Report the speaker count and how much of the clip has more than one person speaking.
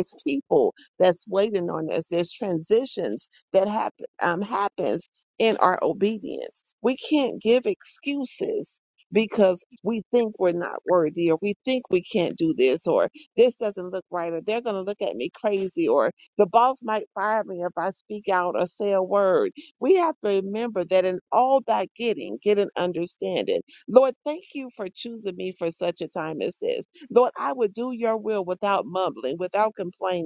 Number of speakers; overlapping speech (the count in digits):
1, no overlap